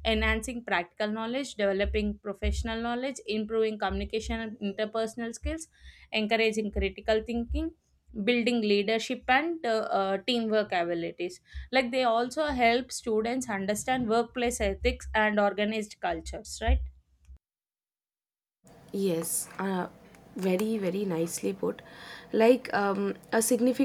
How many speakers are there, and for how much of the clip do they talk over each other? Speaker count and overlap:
two, no overlap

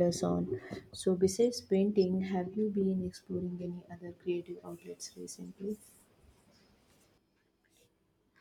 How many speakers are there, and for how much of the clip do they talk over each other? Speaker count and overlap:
one, no overlap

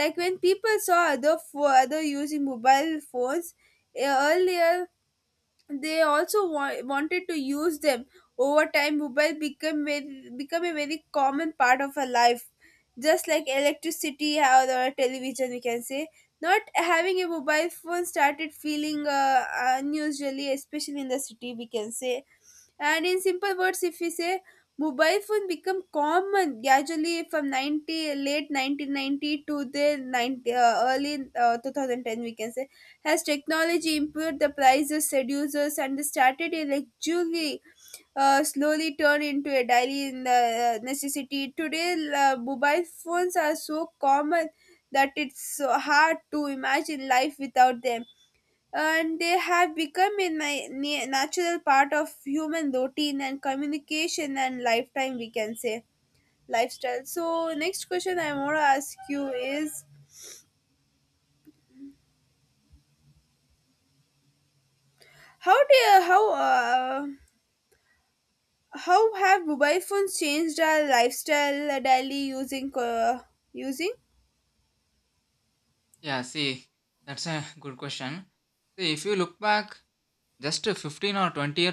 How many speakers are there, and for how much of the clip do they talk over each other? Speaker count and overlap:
two, no overlap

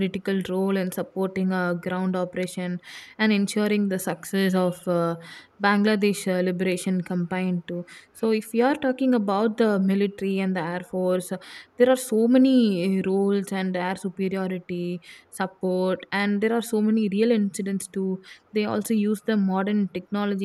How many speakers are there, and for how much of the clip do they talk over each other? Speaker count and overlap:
one, no overlap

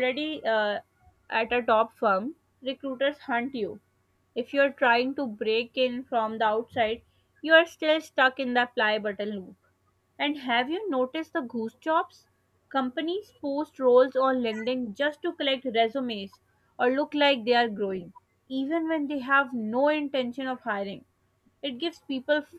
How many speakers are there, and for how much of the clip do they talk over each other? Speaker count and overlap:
one, no overlap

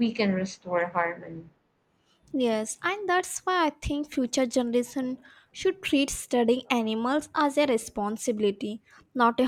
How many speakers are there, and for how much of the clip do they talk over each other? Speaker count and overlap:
two, no overlap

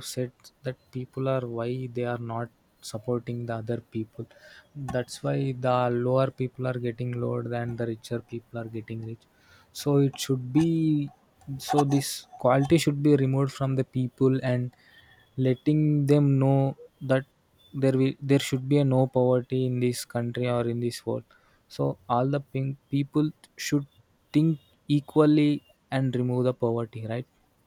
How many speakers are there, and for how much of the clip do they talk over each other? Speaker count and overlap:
one, no overlap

